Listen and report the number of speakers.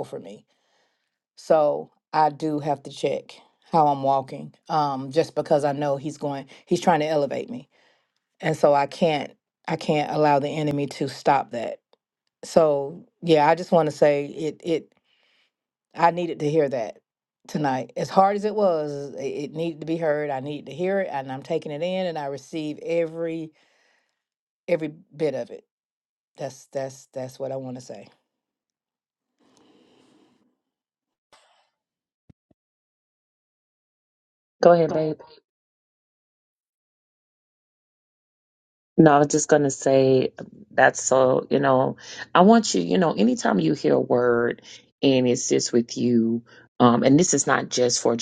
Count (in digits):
2